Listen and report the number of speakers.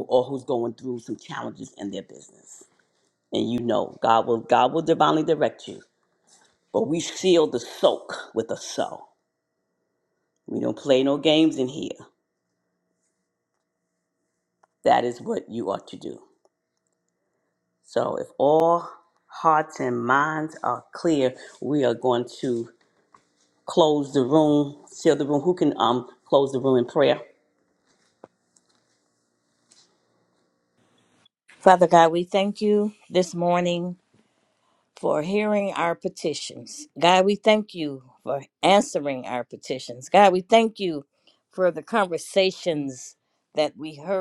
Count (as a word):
two